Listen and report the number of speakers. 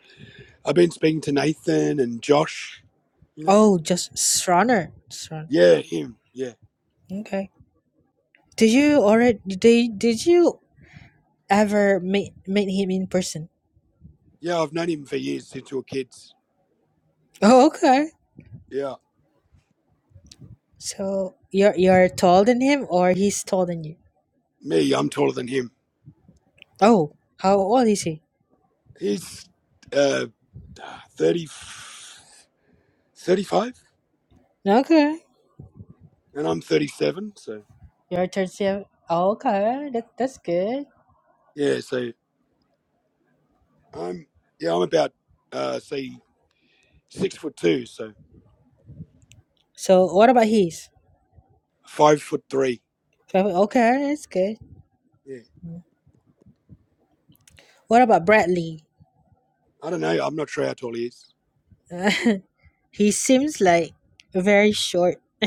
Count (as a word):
two